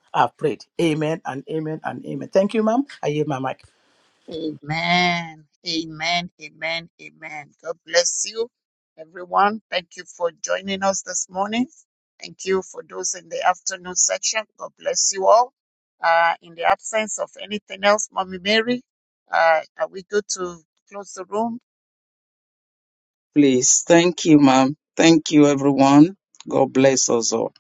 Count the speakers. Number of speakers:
3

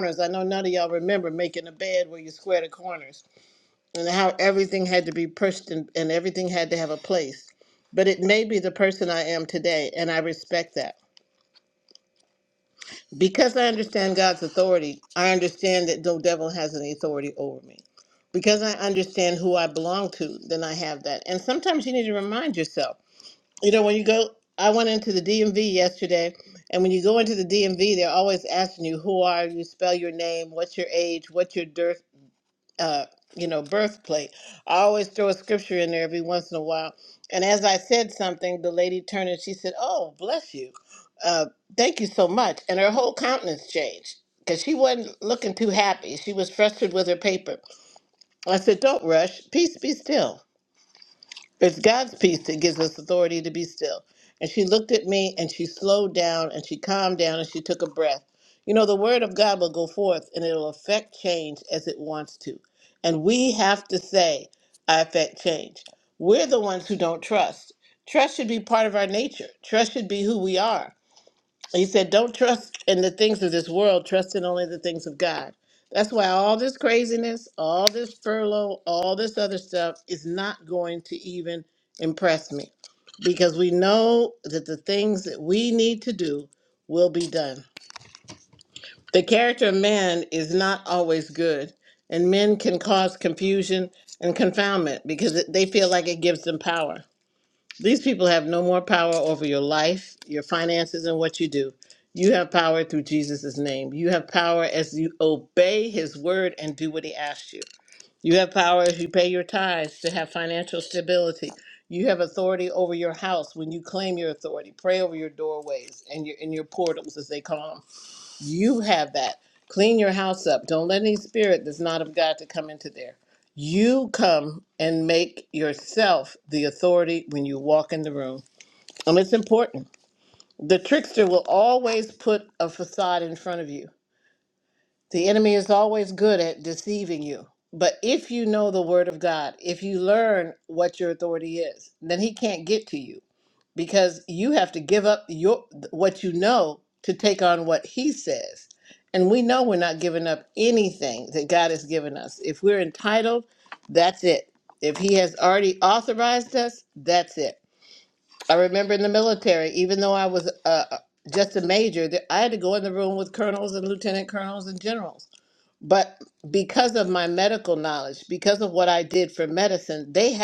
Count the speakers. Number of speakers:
1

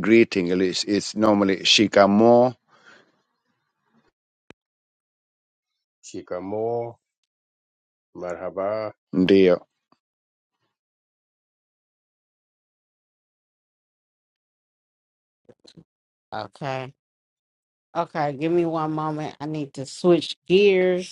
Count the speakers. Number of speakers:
3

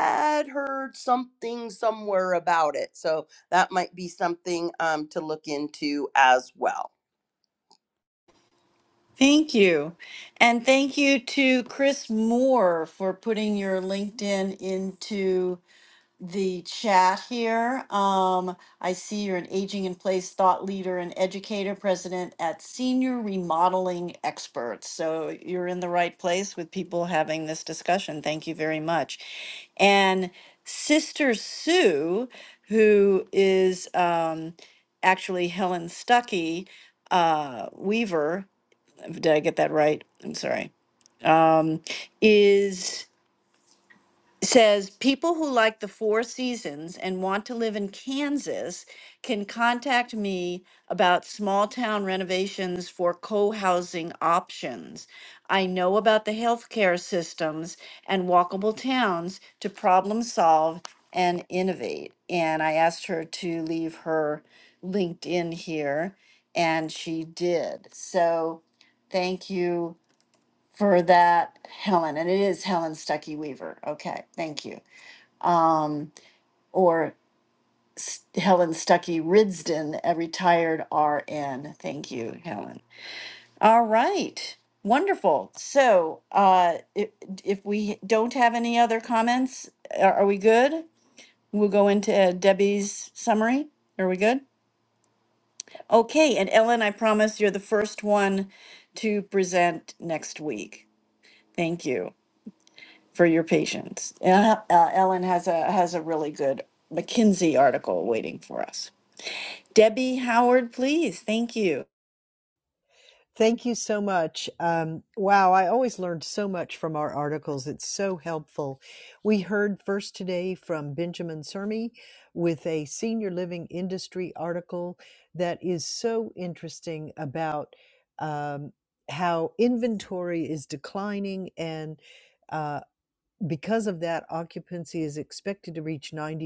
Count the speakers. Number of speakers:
3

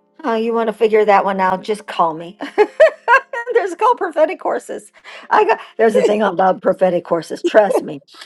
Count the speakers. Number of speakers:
1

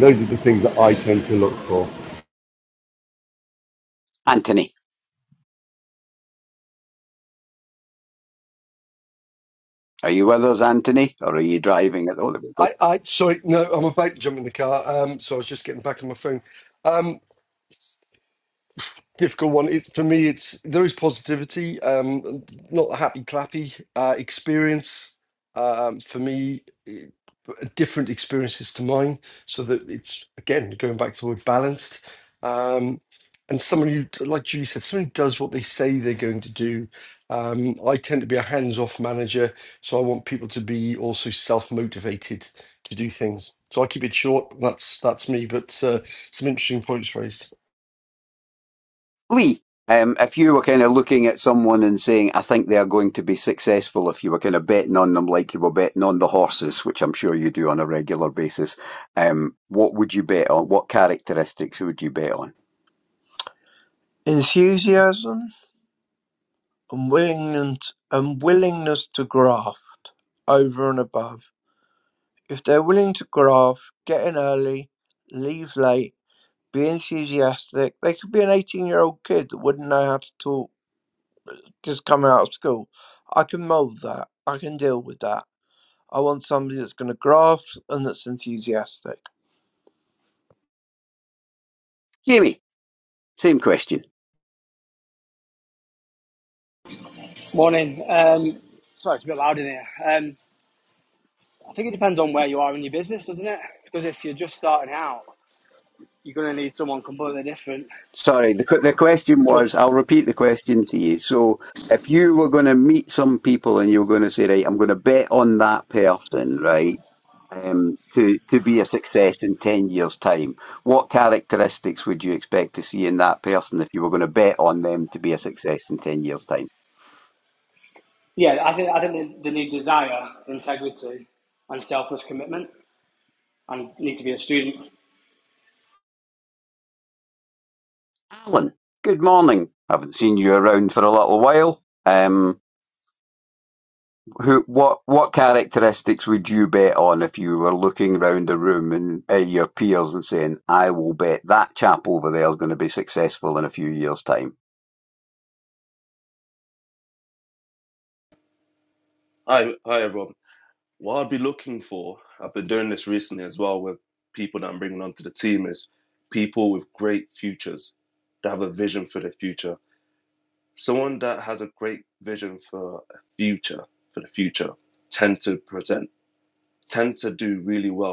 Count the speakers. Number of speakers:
6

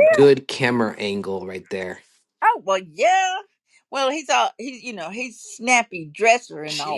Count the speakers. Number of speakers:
2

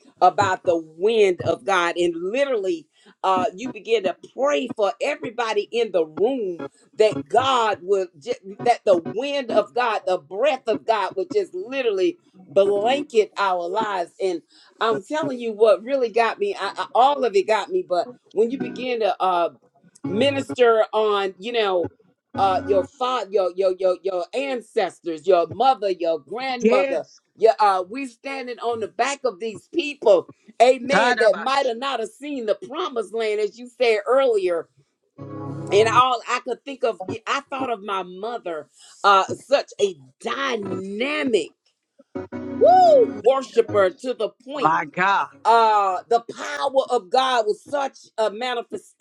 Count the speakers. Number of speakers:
2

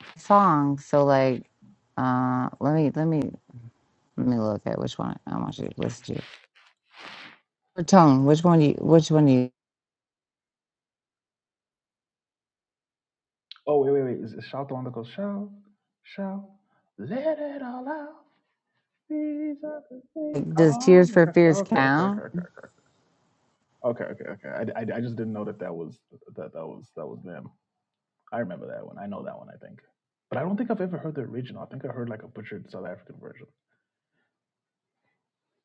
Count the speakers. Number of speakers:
2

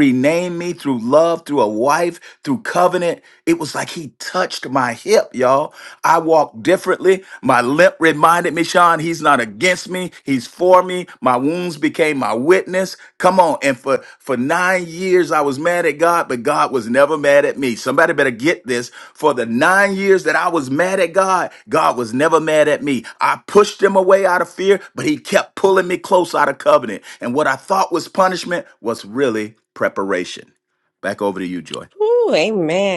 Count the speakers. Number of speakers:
2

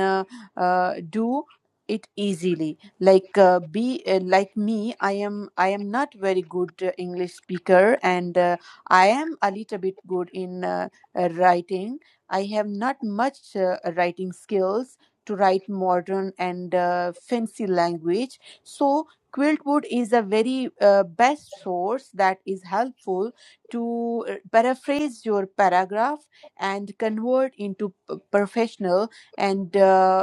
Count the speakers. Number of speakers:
1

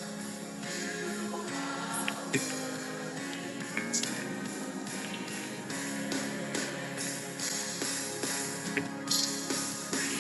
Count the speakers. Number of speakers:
0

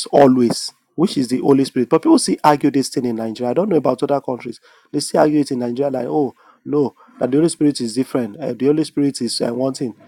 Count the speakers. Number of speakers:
1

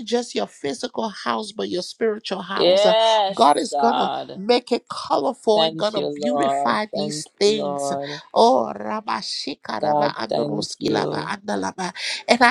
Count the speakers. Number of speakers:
2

